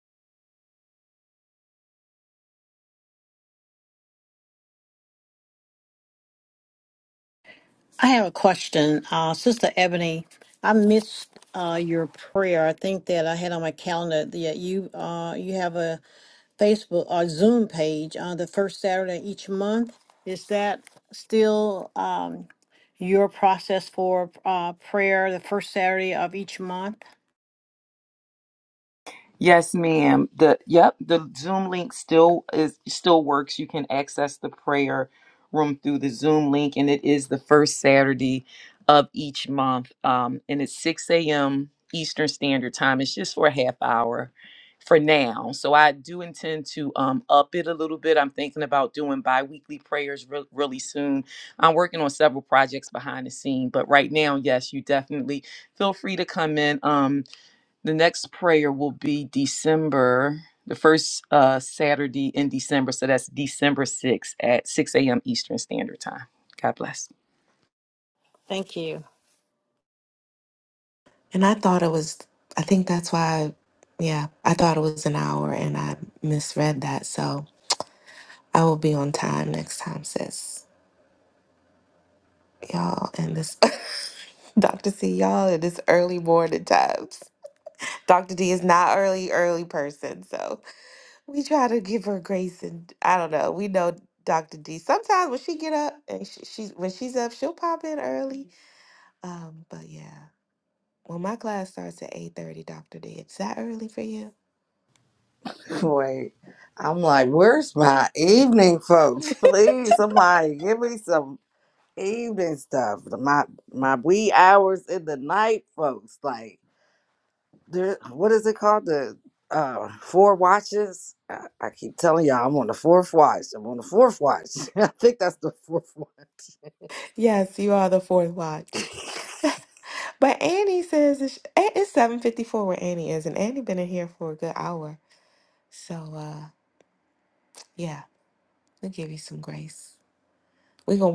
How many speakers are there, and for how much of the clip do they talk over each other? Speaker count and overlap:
4, no overlap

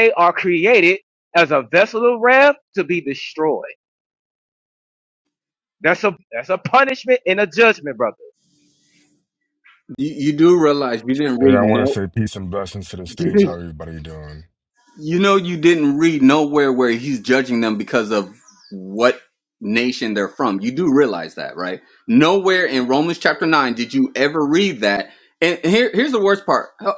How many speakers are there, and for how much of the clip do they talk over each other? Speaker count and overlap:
3, about 3%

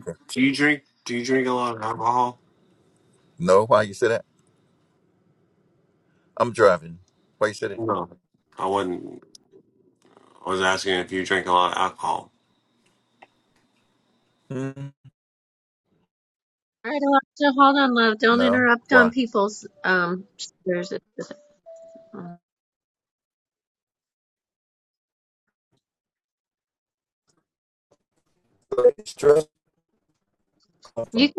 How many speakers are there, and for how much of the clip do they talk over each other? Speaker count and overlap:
3, about 2%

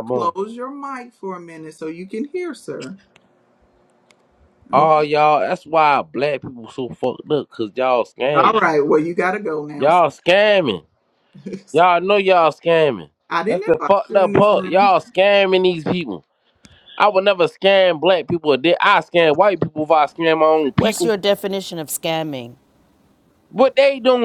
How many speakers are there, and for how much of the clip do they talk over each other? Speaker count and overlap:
3, about 10%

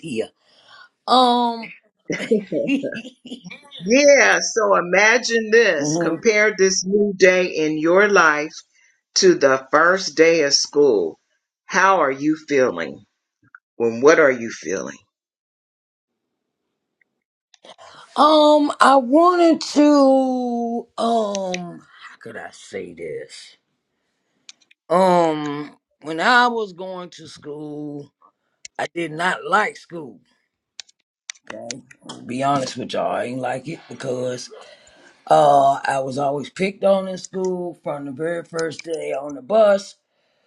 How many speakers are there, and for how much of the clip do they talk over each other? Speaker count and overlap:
2, about 1%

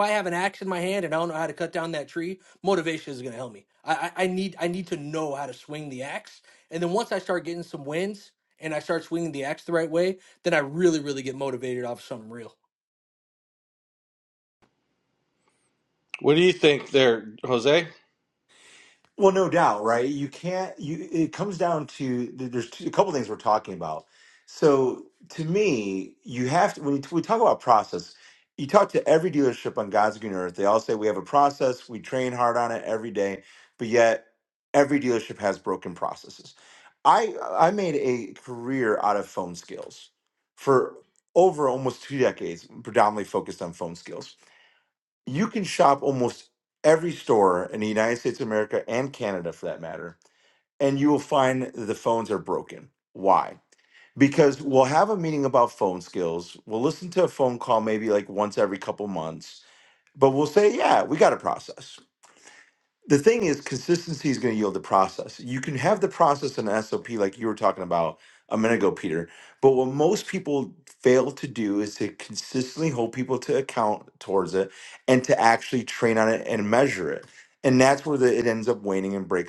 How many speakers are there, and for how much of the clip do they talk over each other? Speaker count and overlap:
3, no overlap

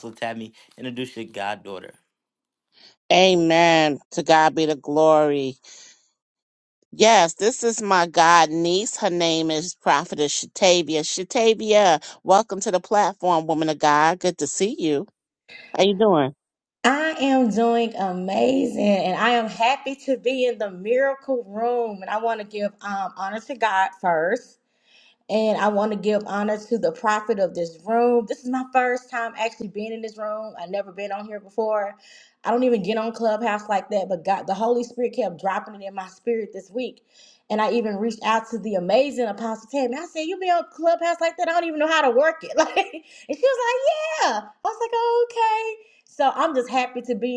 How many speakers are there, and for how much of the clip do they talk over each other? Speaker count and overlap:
3, no overlap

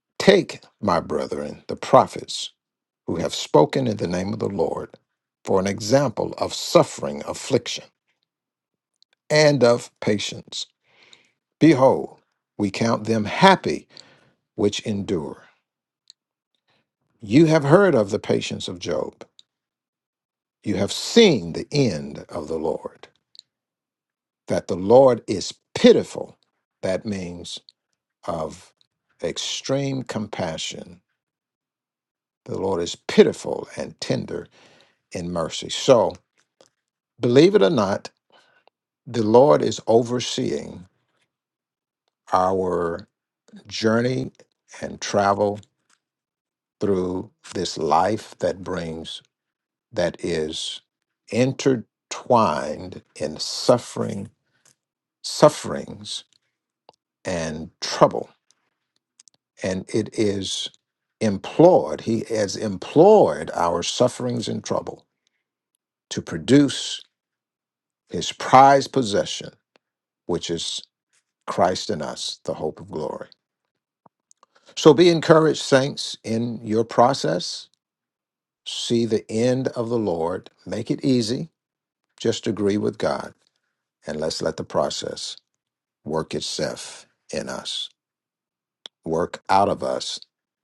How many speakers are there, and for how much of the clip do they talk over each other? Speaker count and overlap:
1, no overlap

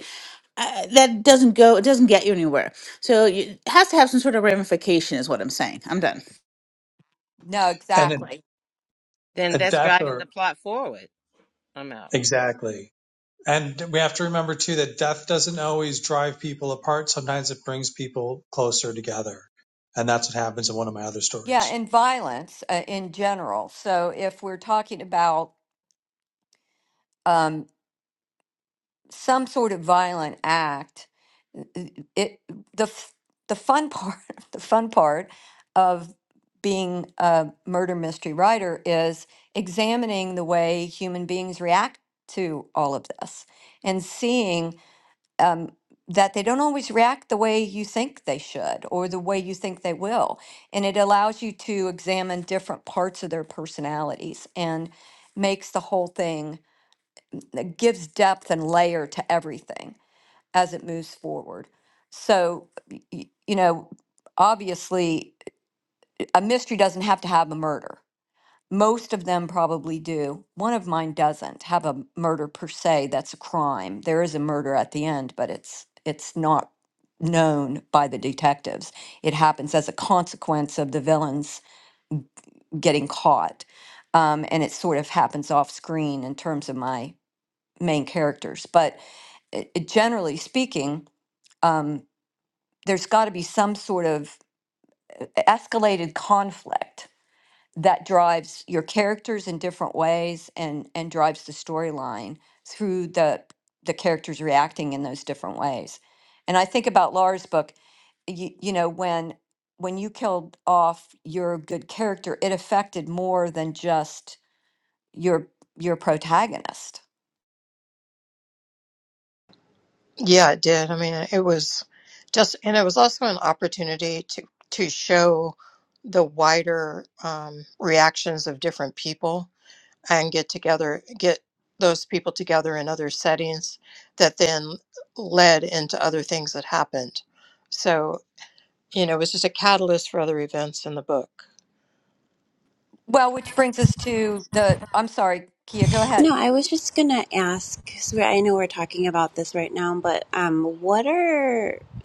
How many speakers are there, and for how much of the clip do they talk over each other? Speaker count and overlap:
6, about 1%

